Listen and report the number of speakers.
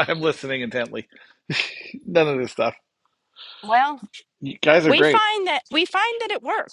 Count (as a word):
two